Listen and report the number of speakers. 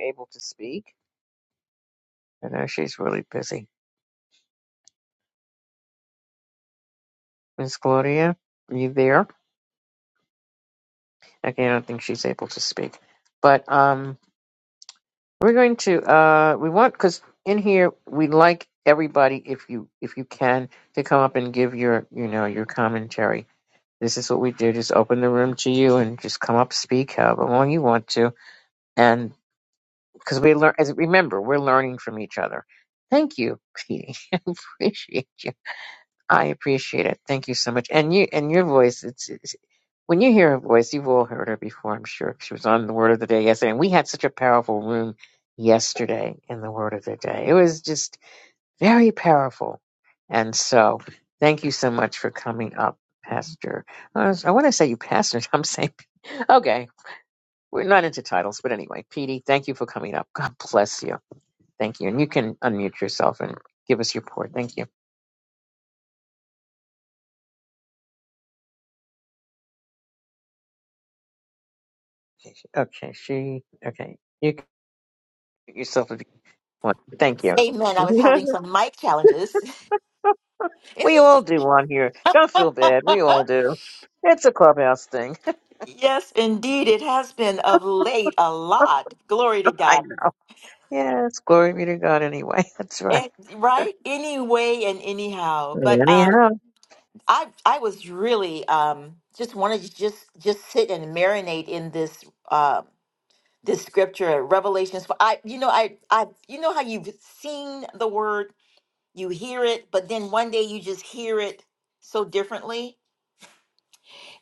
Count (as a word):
two